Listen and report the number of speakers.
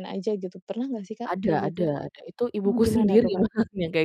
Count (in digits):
2